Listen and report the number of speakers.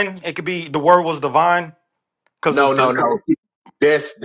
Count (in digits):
2